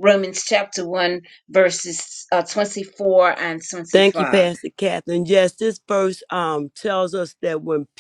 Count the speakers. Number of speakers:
two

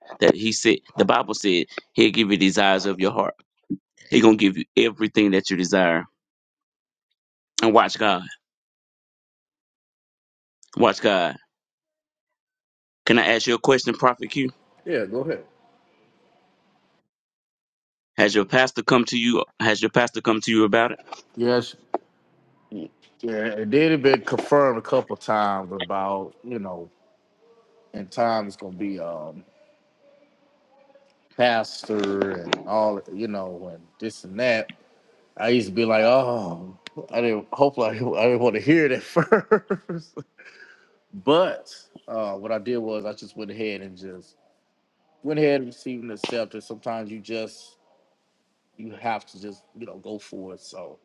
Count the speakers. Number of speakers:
two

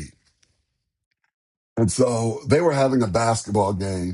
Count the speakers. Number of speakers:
one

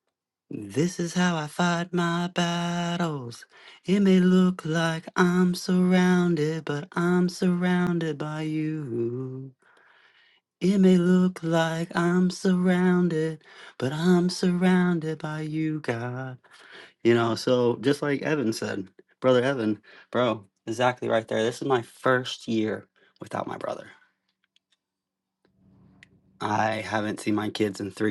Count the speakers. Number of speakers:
one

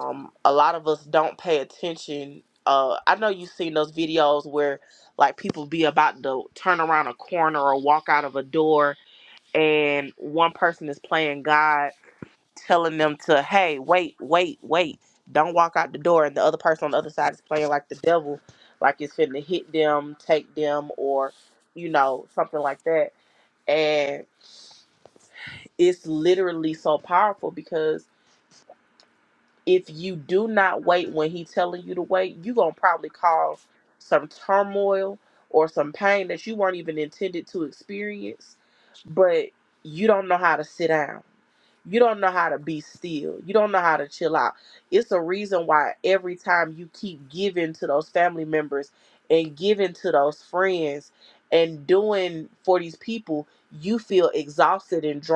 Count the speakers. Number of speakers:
one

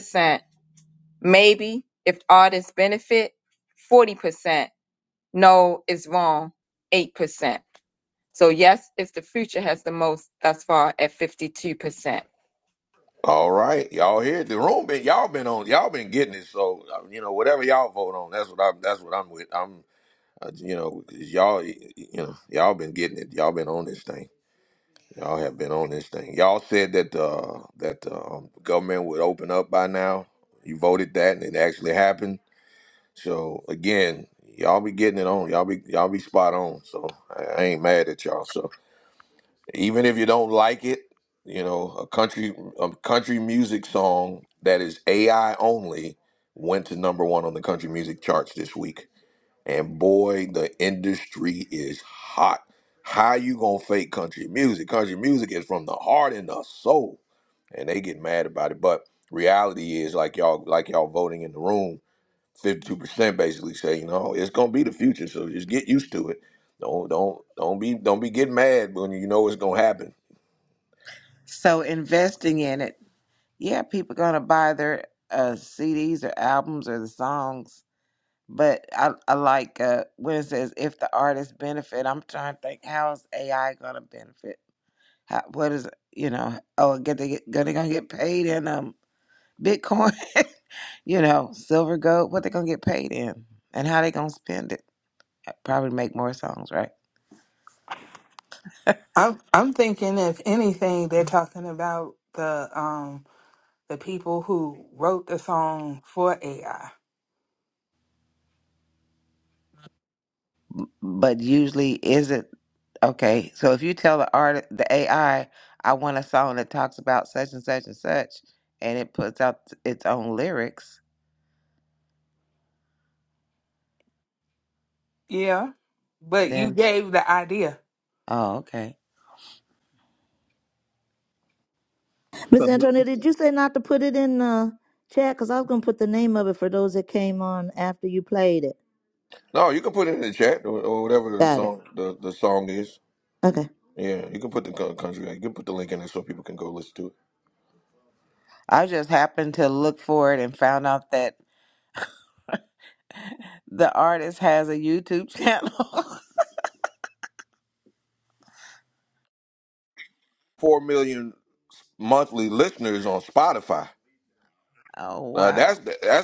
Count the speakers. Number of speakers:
five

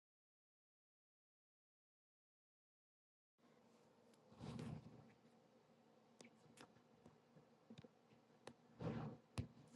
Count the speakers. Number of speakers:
zero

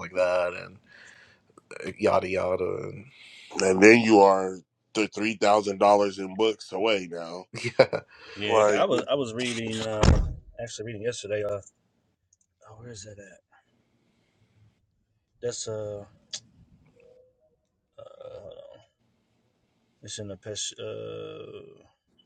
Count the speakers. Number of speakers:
three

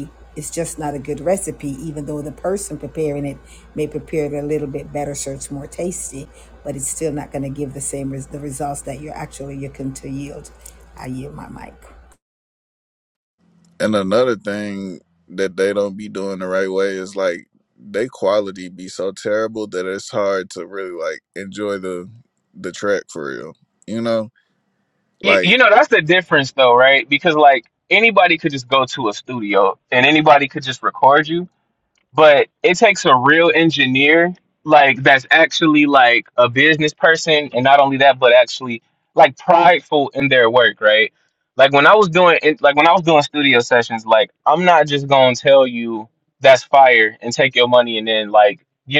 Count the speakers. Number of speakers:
three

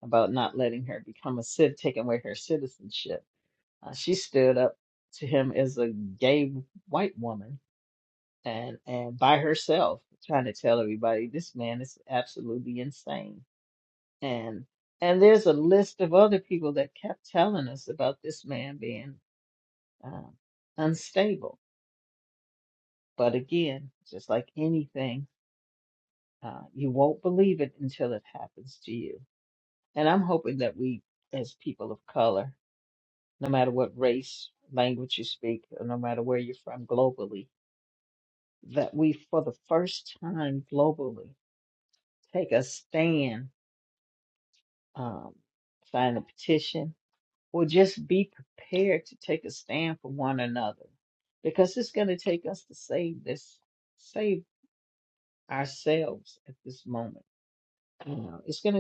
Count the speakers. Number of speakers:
one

